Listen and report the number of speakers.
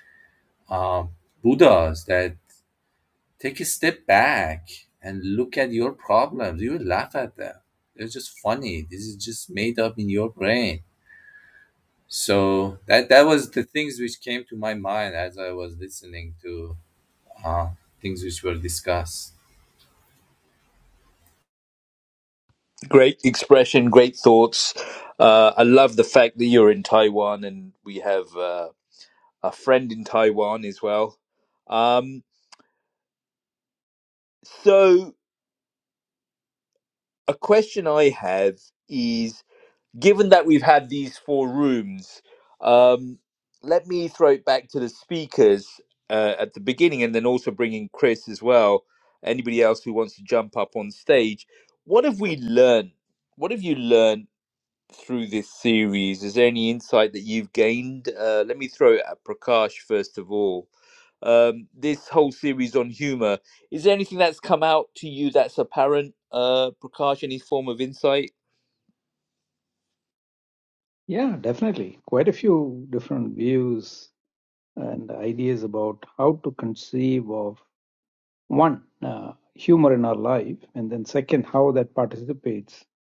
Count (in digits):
3